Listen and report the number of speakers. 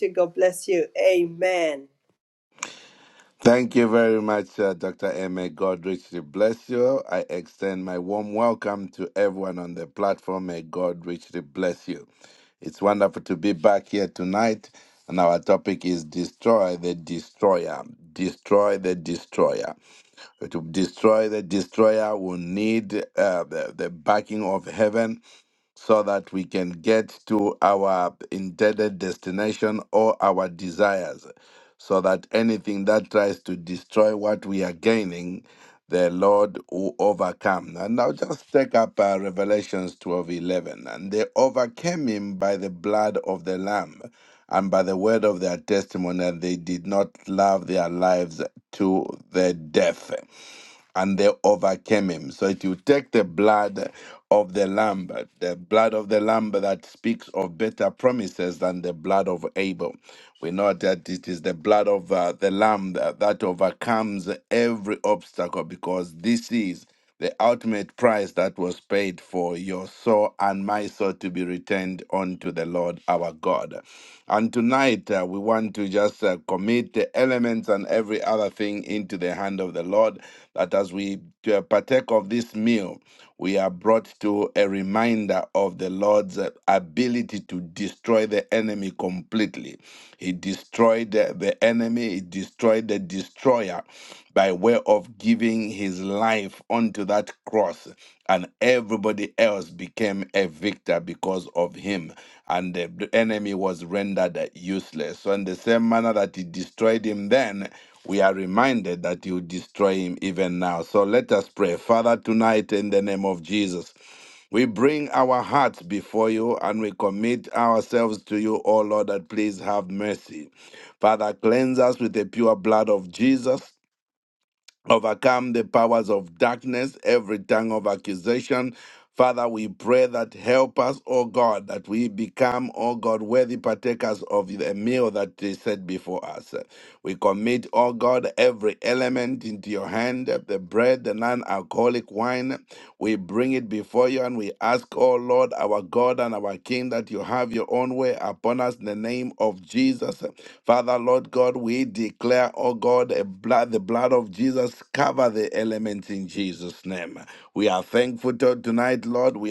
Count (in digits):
2